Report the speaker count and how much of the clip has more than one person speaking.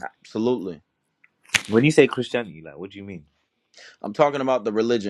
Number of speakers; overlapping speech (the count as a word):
two, no overlap